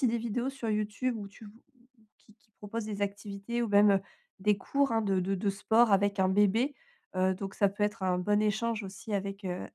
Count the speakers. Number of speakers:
1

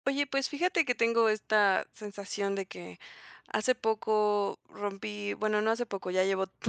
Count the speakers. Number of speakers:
1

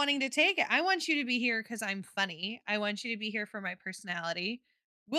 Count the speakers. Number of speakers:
1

